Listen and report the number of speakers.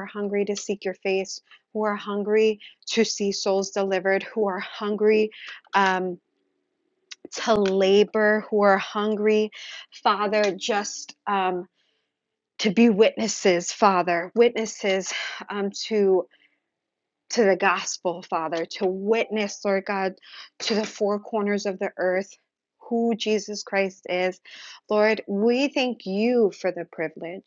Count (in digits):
1